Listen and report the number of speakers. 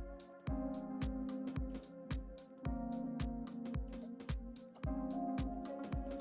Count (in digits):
0